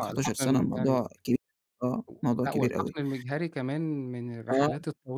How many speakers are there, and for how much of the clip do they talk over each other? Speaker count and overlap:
2, about 34%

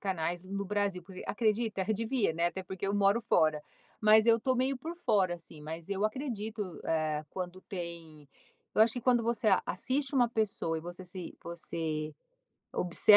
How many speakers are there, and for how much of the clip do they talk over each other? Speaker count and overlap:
1, no overlap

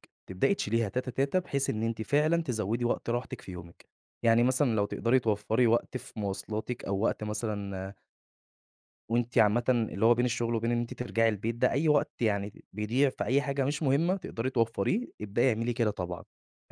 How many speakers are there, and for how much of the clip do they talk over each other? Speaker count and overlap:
1, no overlap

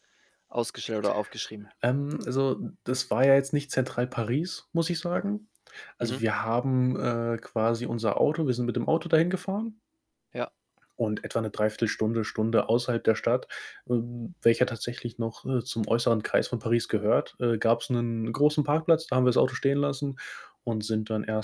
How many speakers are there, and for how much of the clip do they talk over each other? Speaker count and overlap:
2, about 1%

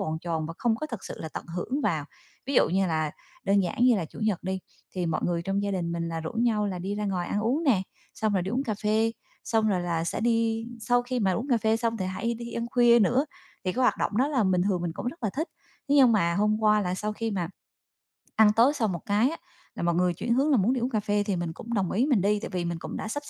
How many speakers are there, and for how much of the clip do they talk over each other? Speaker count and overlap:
1, no overlap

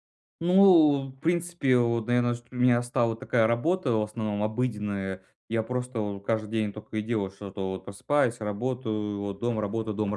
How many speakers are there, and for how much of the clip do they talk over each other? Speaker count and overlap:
1, no overlap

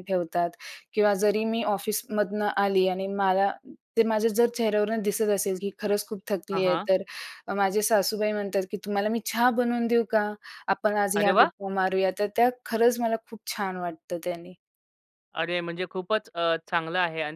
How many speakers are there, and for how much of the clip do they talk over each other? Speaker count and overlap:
2, about 4%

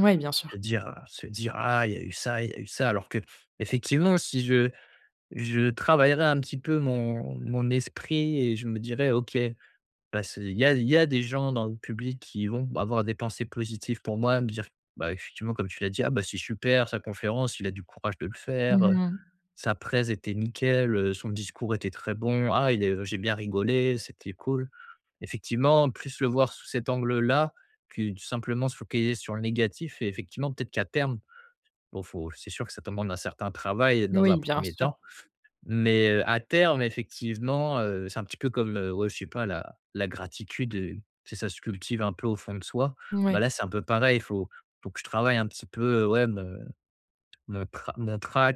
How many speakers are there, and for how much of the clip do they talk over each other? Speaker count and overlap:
2, about 3%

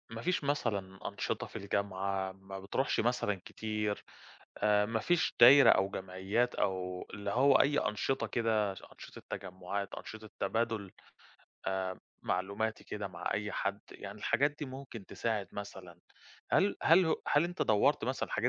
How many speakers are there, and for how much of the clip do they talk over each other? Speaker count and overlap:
1, no overlap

